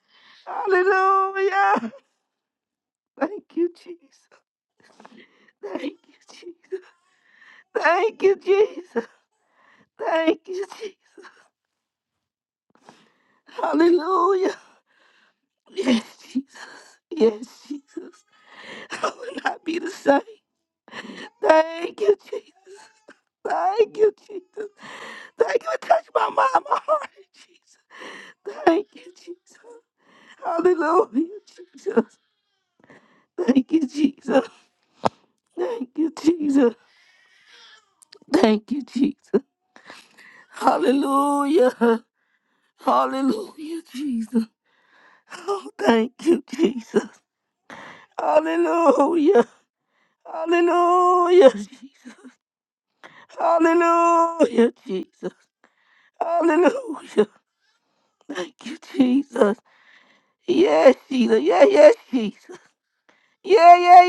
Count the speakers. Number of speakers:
1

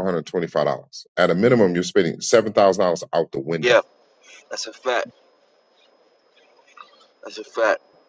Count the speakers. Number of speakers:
2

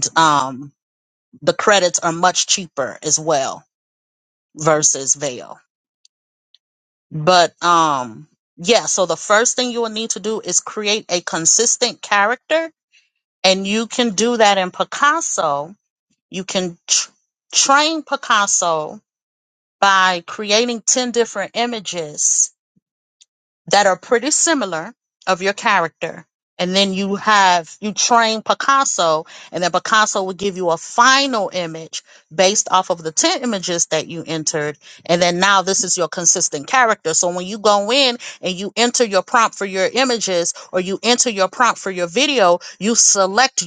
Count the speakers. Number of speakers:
1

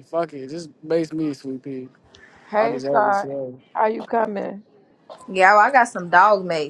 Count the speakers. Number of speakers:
3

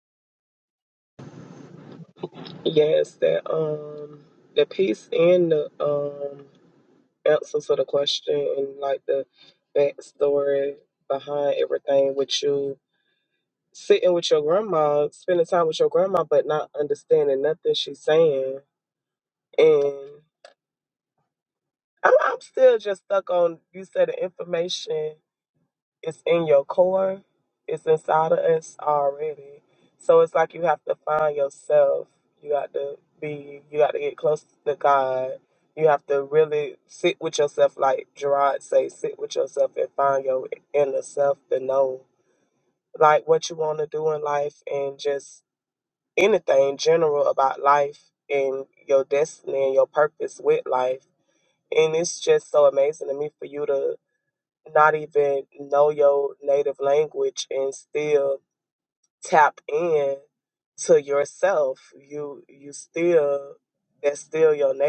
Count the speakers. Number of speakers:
1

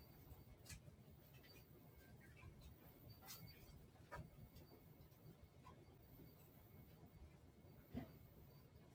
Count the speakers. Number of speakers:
0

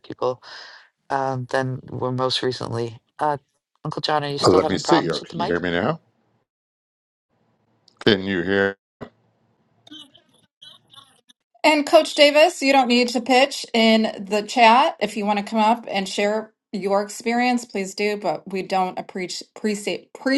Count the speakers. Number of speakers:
3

